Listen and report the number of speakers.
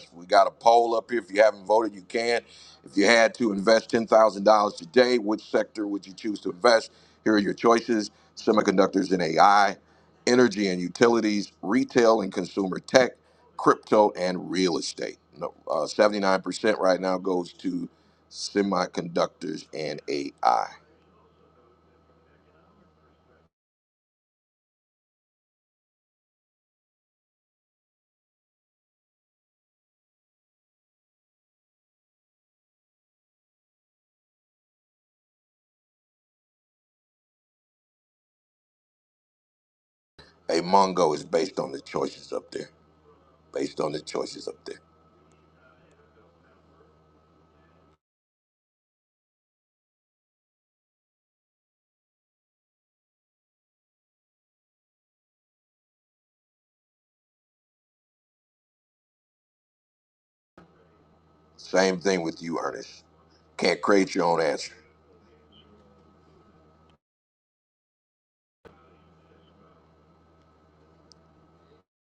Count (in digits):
1